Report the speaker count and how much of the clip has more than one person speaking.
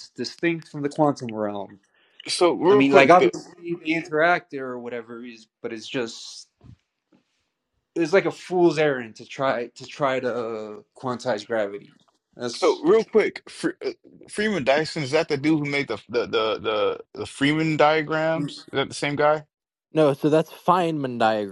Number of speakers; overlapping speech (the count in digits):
3, about 4%